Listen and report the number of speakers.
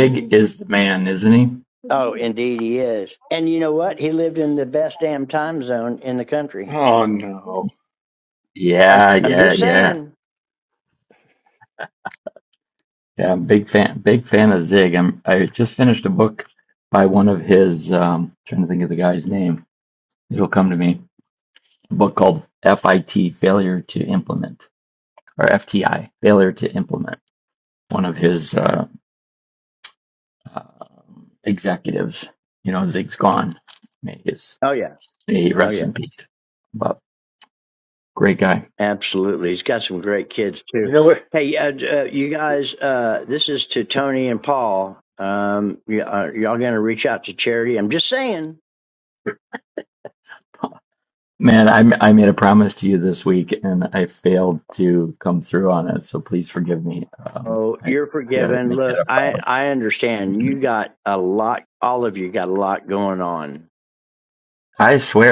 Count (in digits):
3